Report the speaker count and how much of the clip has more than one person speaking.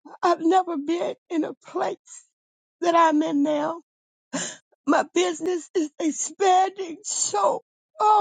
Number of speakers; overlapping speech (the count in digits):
1, no overlap